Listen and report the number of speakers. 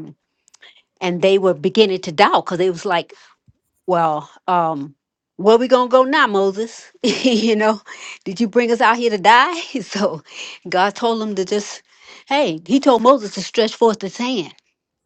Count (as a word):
one